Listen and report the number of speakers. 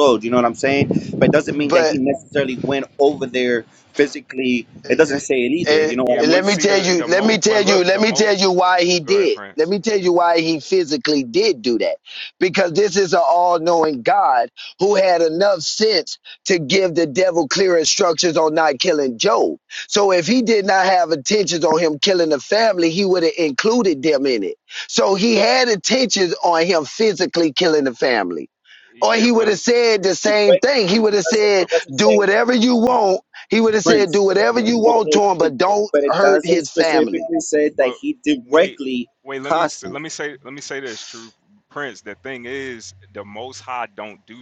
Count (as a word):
three